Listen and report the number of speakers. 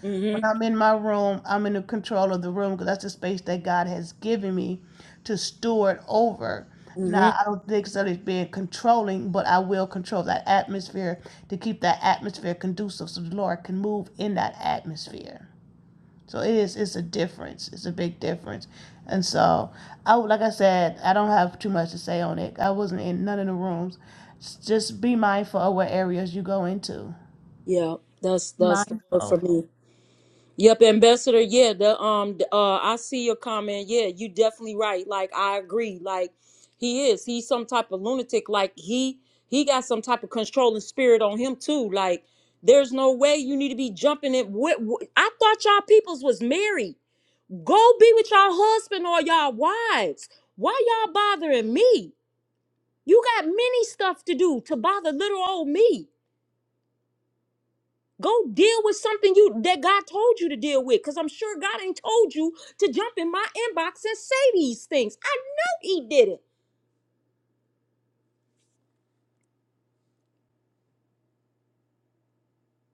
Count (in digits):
2